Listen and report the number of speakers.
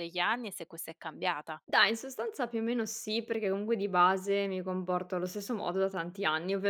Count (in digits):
2